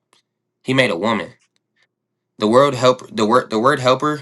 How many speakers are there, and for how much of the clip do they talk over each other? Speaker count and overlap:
one, no overlap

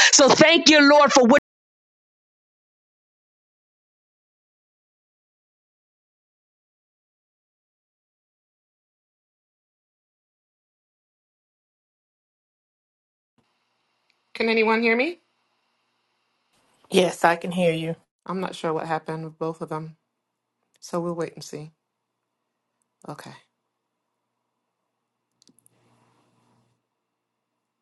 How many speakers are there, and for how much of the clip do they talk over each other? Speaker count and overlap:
three, no overlap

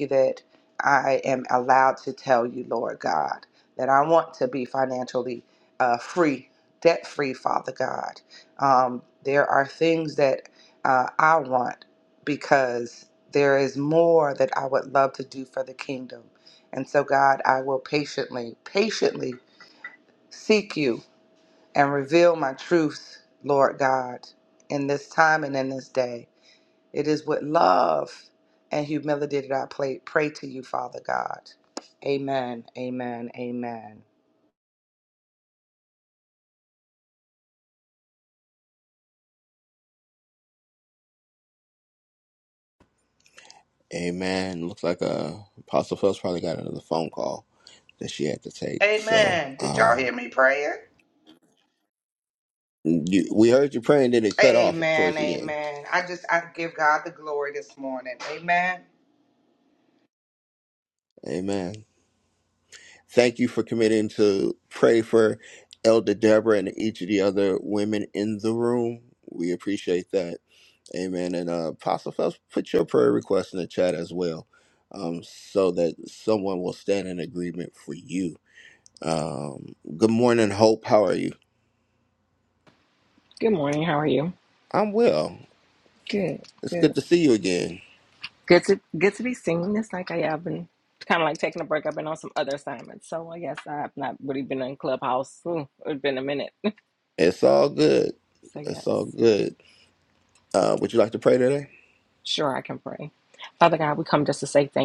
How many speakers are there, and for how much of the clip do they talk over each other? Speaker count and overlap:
three, about 3%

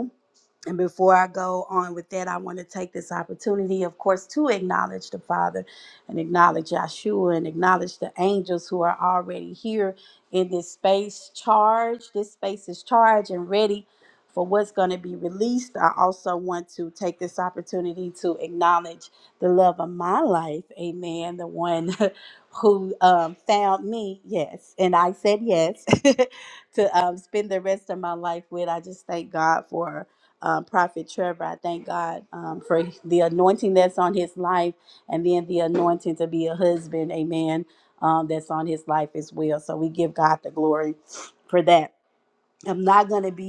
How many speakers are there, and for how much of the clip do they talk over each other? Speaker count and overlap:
one, no overlap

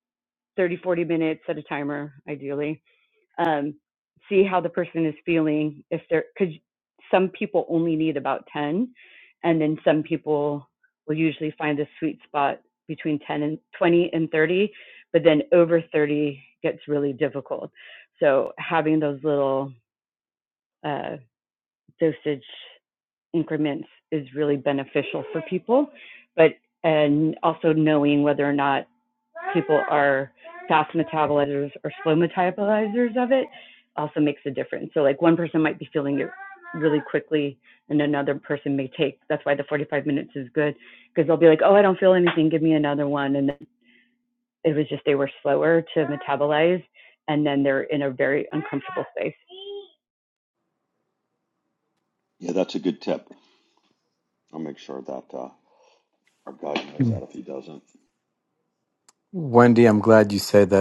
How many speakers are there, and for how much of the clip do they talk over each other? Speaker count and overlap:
three, no overlap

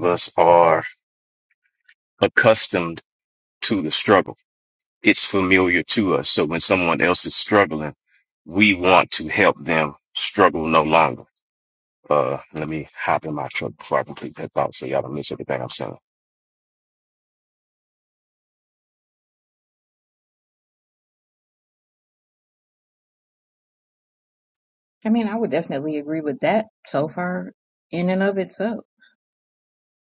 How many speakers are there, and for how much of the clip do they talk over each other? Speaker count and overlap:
two, no overlap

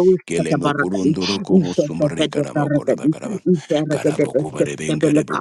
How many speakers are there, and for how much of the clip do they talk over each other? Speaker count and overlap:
two, about 74%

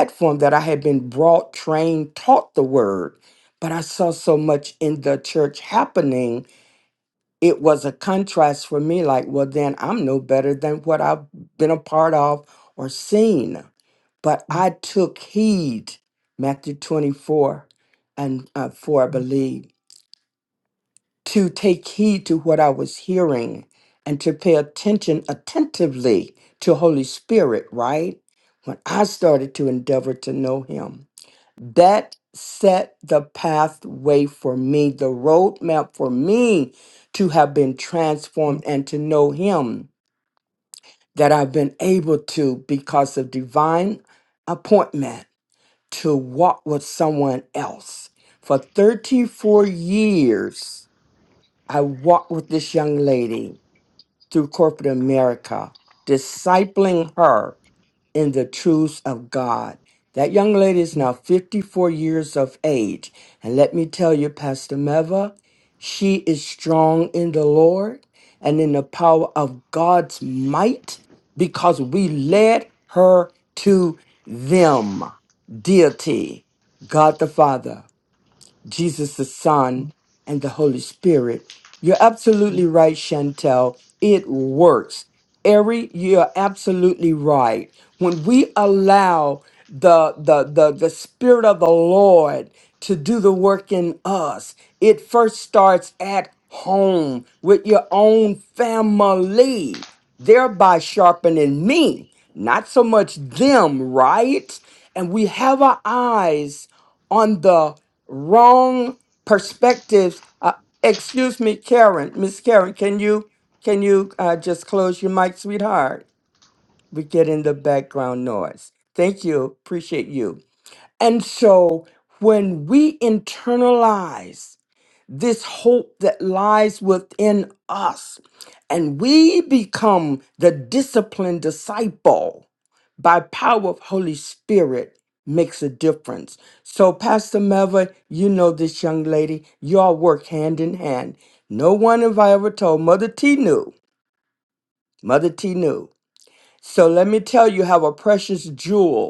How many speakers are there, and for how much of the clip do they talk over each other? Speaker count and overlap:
one, no overlap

